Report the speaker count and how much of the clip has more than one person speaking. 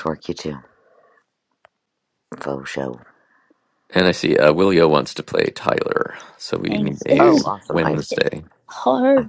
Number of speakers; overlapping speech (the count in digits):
3, about 16%